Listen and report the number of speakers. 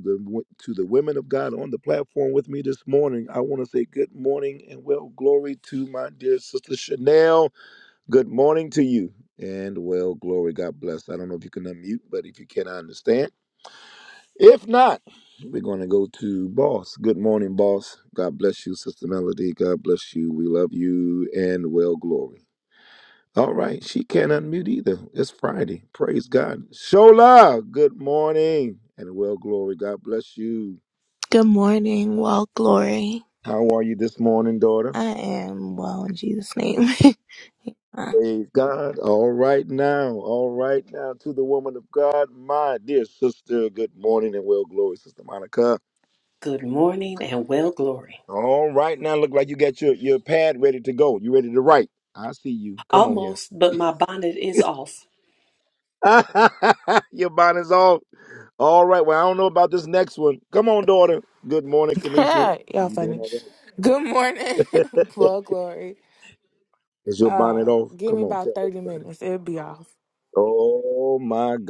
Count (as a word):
four